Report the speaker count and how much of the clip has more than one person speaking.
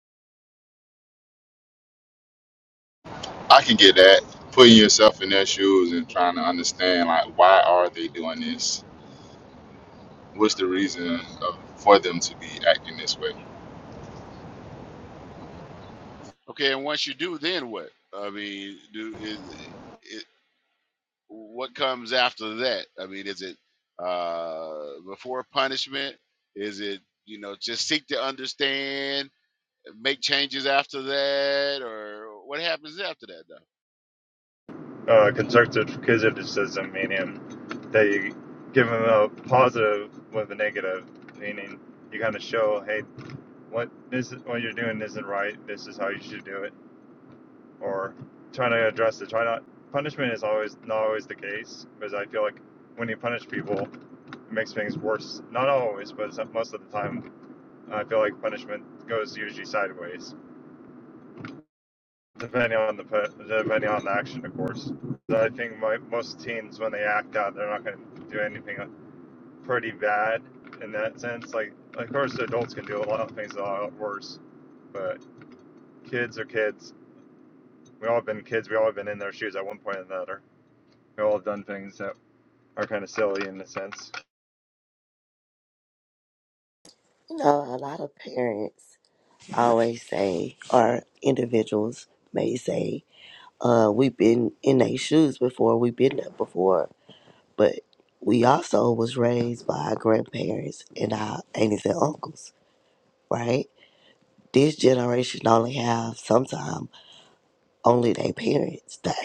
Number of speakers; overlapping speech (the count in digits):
4, no overlap